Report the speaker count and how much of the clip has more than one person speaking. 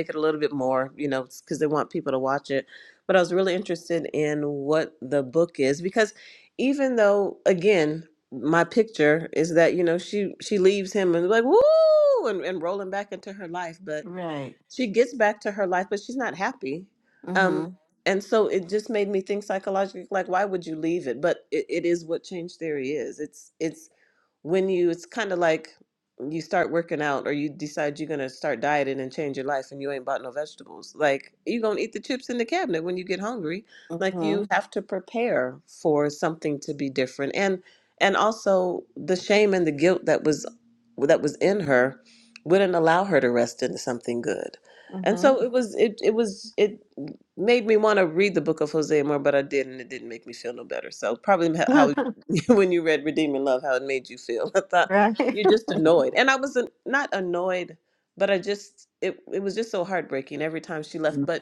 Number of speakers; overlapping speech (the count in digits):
2, about 2%